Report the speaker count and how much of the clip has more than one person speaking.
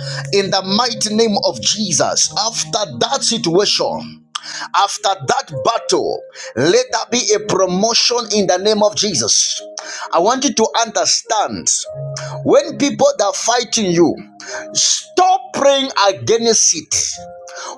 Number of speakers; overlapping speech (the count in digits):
1, no overlap